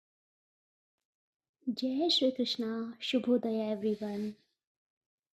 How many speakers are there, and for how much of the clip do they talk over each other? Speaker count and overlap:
one, no overlap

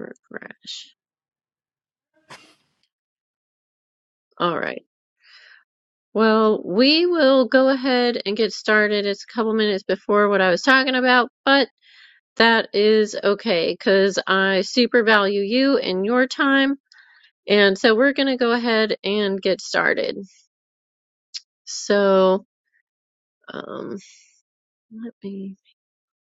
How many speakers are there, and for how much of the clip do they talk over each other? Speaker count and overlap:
one, no overlap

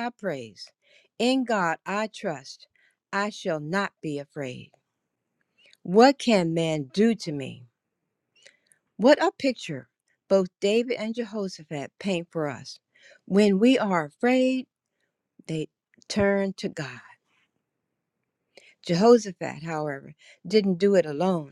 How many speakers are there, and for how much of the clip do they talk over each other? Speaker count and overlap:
one, no overlap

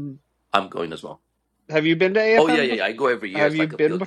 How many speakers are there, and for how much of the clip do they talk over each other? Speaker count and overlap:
two, about 28%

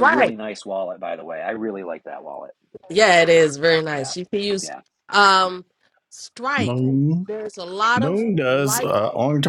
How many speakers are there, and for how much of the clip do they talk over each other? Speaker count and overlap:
three, about 14%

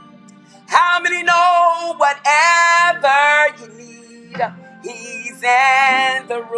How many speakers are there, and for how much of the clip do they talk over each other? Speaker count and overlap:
one, no overlap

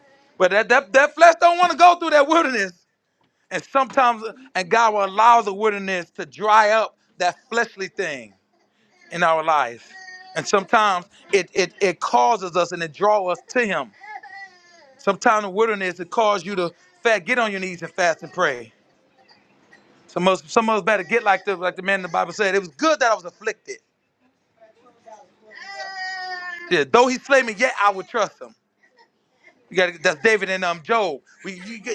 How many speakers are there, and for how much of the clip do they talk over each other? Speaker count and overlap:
one, no overlap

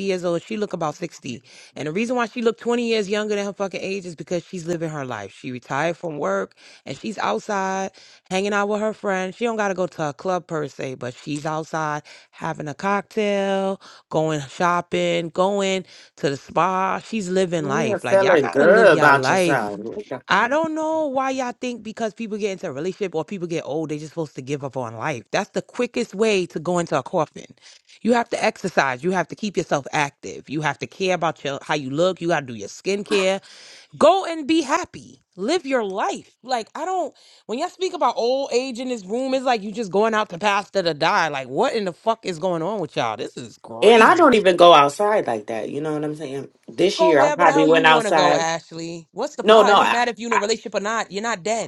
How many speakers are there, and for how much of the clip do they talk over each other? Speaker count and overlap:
two, about 9%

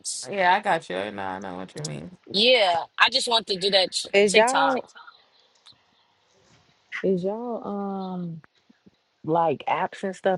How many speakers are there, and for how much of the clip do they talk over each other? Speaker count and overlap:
three, about 7%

